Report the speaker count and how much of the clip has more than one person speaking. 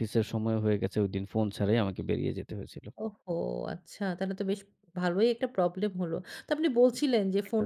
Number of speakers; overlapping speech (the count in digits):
2, about 3%